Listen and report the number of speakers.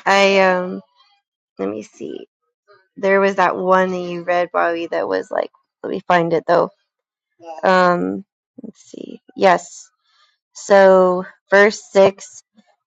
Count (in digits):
1